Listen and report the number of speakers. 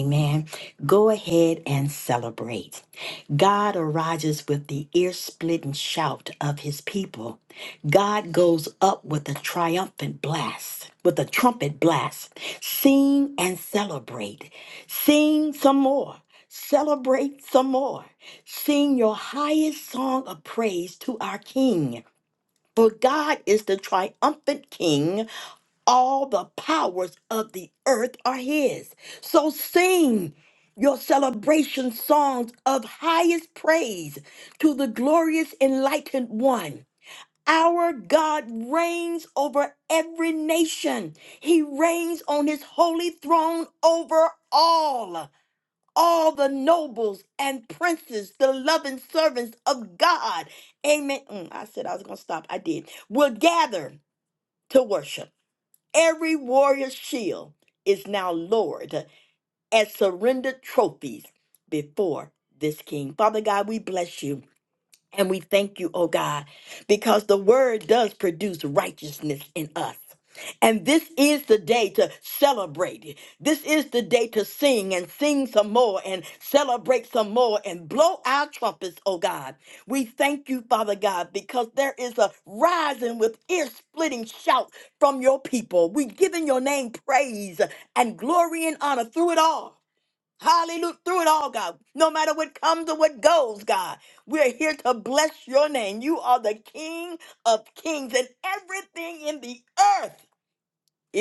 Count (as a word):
one